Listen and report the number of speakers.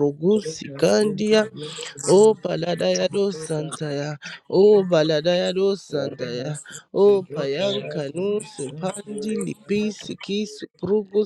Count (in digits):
2